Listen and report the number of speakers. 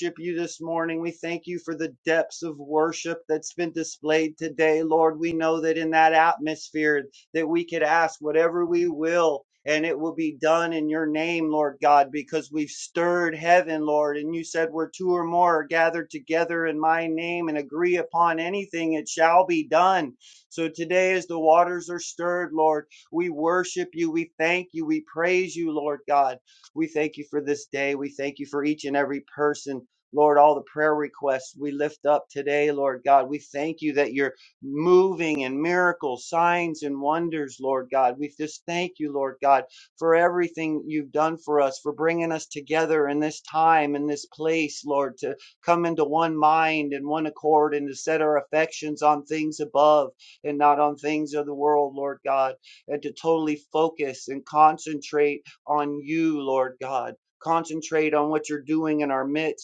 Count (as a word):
one